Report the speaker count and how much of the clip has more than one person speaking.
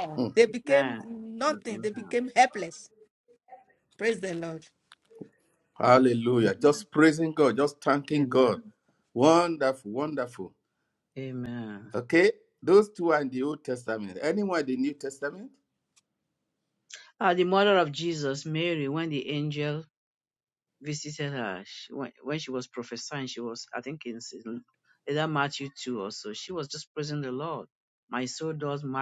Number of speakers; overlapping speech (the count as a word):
three, about 5%